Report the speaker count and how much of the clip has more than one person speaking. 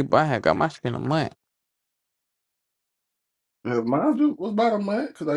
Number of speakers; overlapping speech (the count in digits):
2, no overlap